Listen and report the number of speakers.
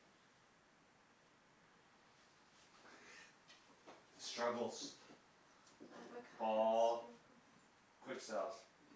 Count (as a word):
two